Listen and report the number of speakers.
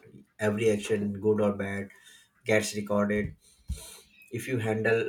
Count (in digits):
1